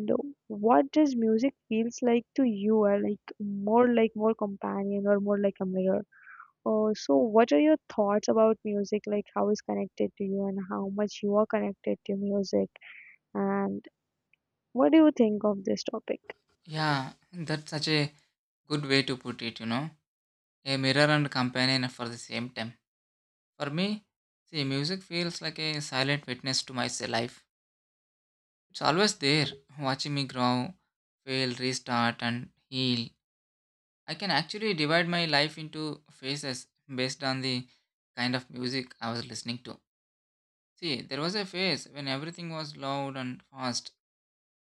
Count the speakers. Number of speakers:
2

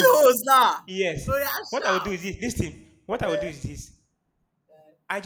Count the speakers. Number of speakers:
2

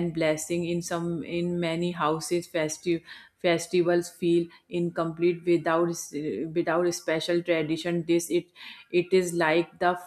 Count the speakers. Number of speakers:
1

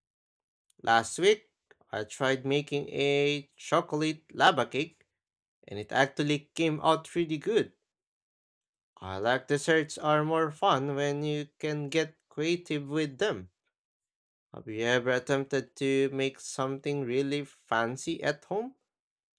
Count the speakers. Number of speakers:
1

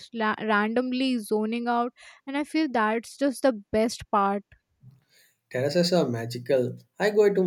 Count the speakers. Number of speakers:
2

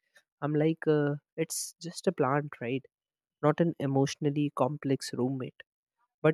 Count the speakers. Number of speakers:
1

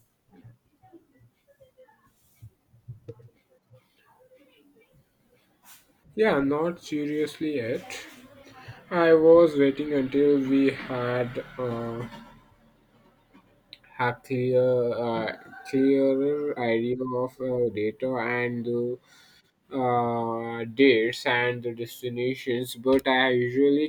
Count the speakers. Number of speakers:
1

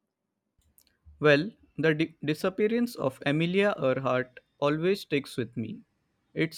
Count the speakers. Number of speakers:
1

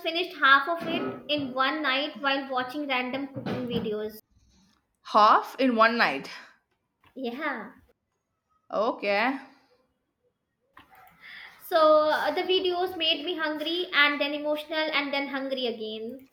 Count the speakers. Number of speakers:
2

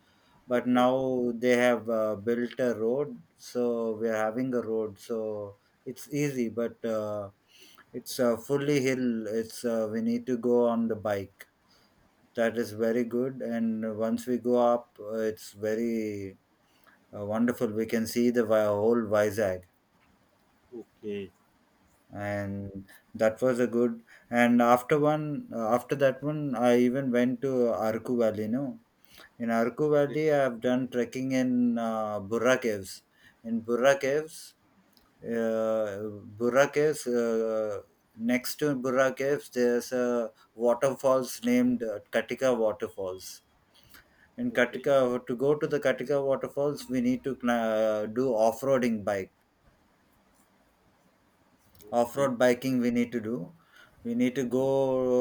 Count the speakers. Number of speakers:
2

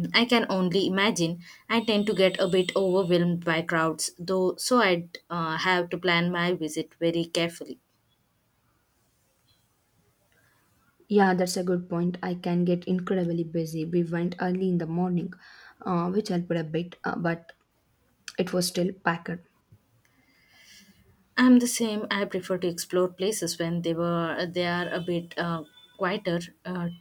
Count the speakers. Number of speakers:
2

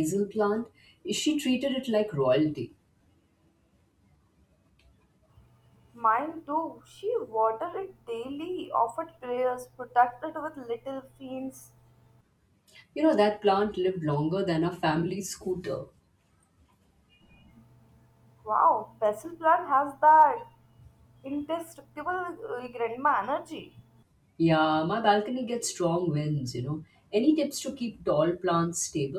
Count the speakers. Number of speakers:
2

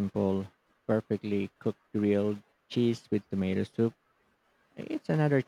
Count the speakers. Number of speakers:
1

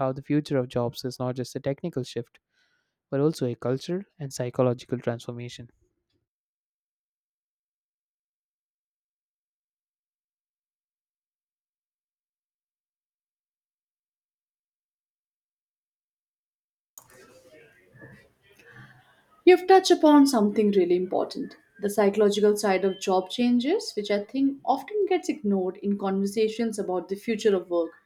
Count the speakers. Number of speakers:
2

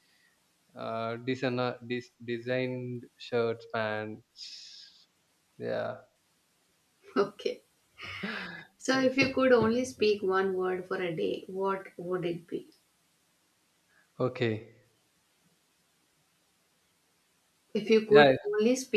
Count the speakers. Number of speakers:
2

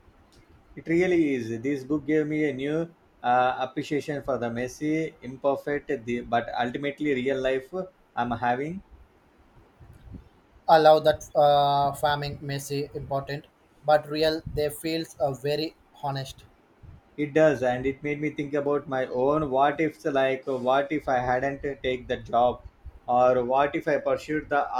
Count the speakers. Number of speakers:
2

